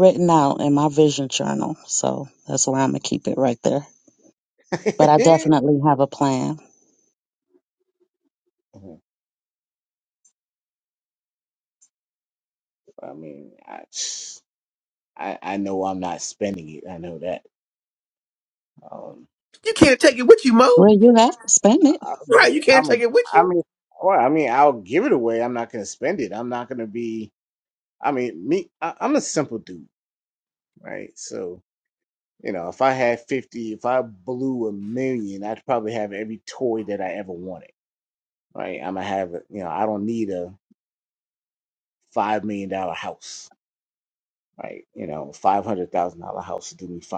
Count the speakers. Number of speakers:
3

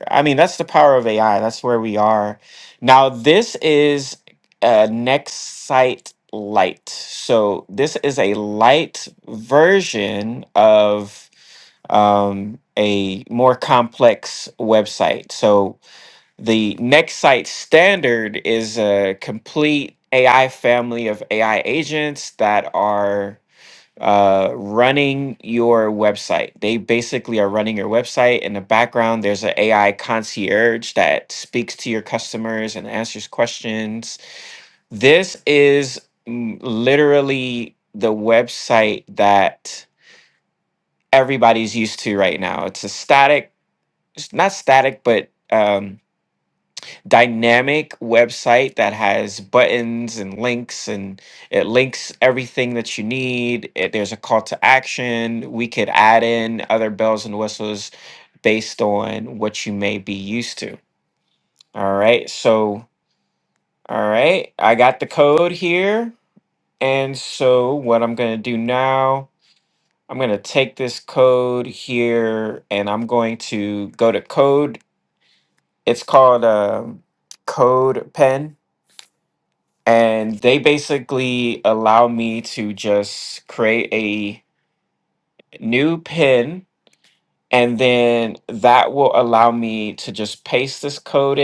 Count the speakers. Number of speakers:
1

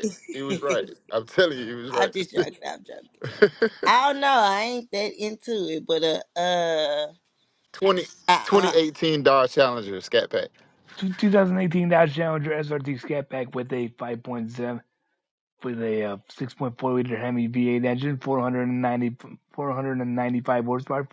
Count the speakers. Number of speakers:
3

